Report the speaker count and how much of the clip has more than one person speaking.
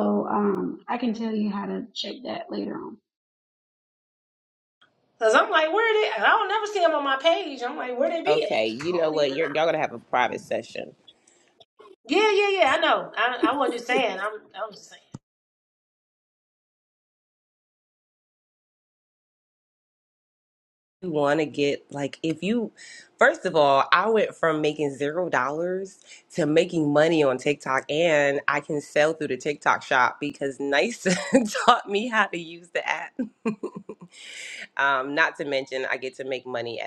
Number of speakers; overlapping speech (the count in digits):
3, about 4%